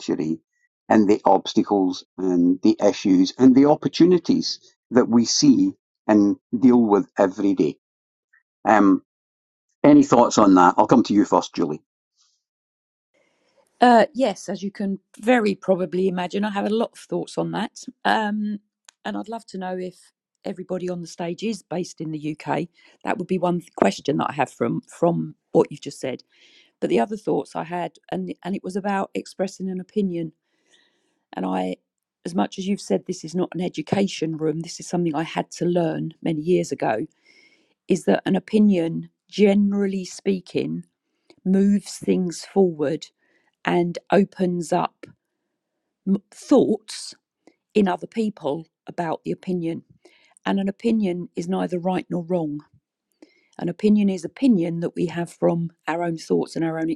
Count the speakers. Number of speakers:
two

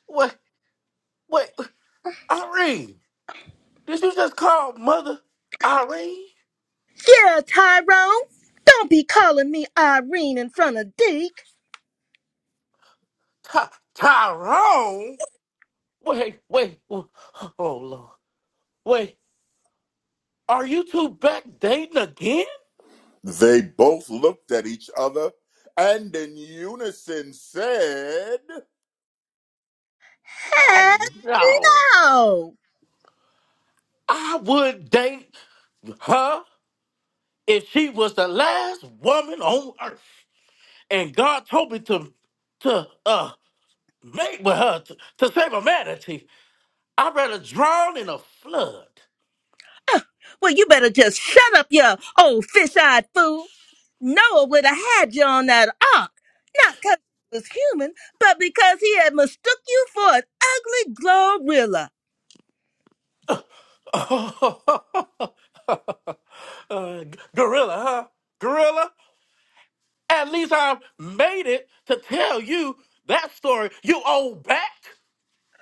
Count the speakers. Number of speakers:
three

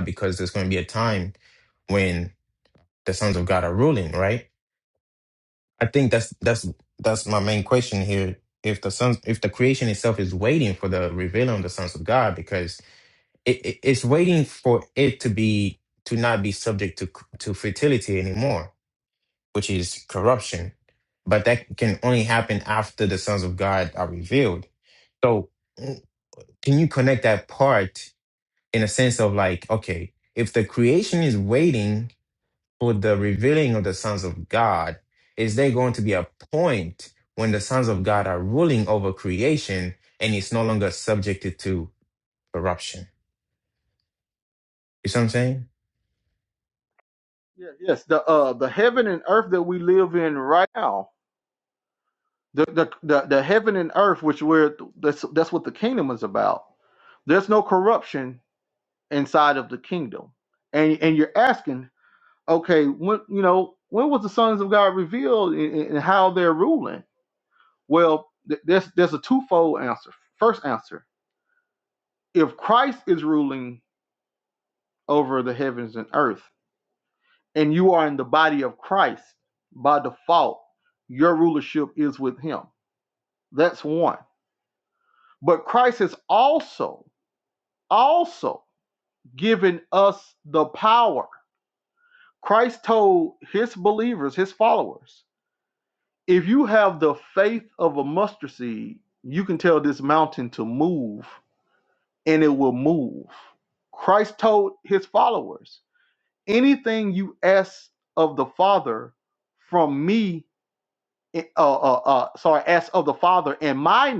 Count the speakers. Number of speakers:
two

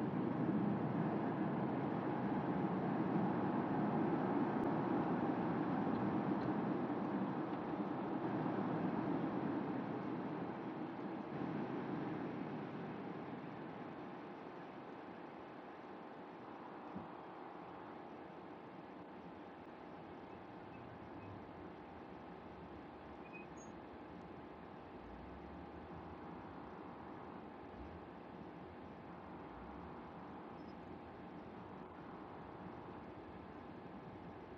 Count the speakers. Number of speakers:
zero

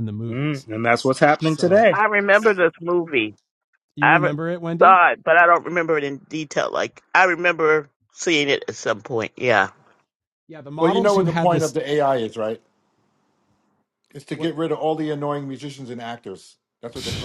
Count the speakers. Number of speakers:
four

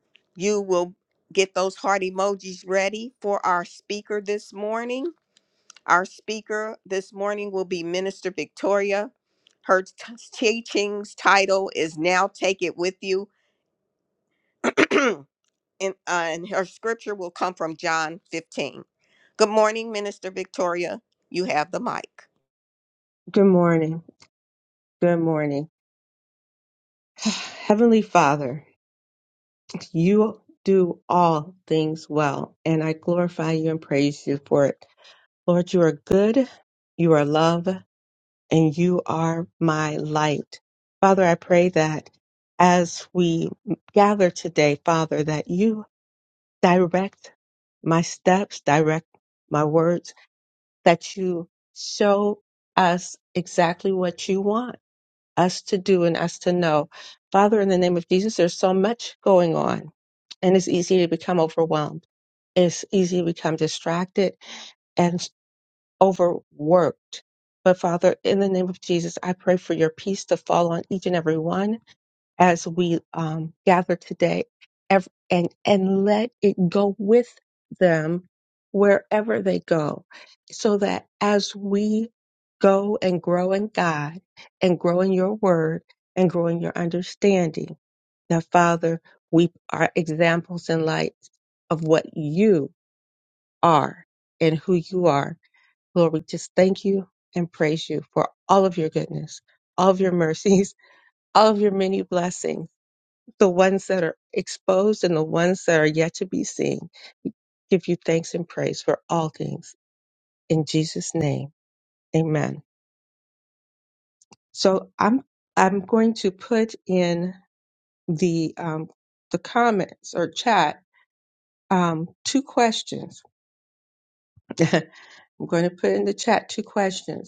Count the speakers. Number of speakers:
two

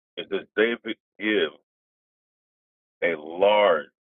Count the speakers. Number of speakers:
one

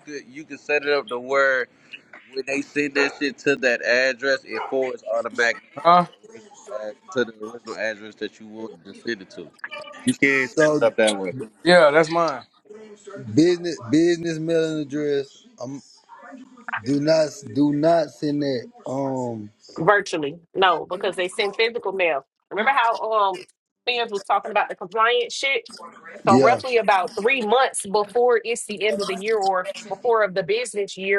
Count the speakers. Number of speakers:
four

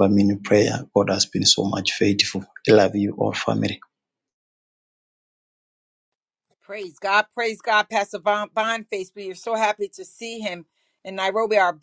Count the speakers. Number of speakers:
two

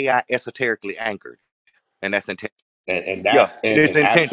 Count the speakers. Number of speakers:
two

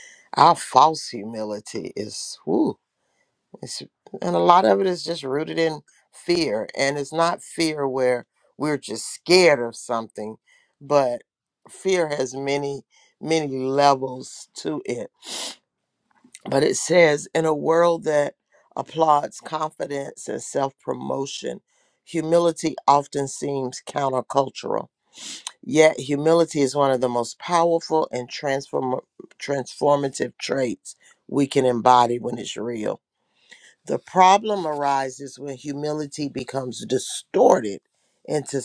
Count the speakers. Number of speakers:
one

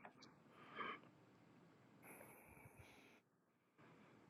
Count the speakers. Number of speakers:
zero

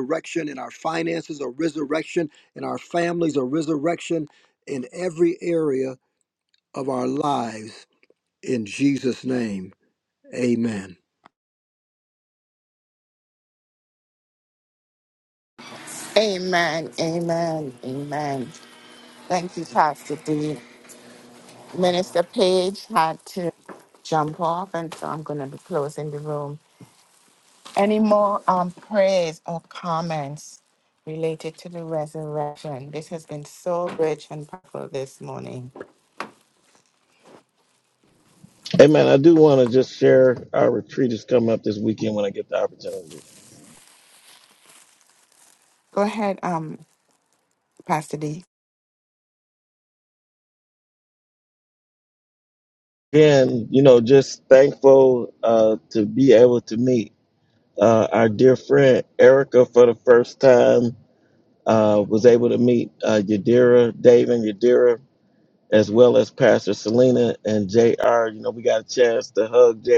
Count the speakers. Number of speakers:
three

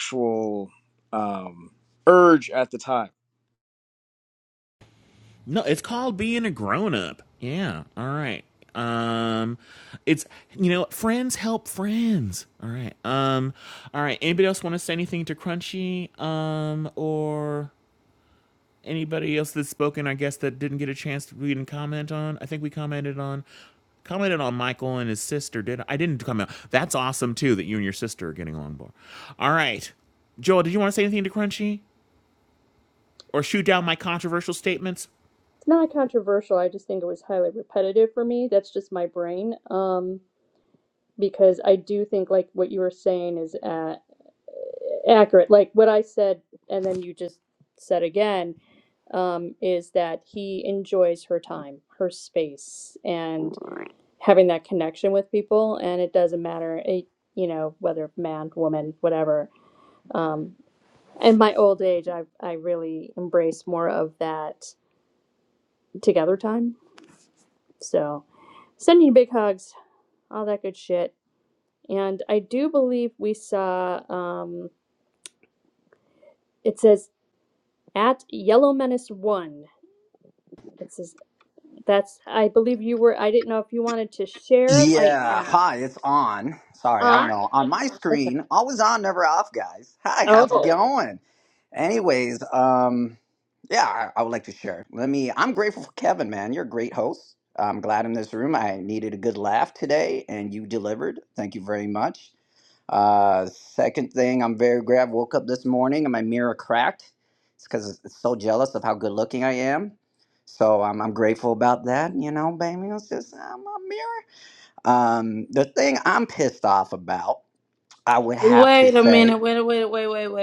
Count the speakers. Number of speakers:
five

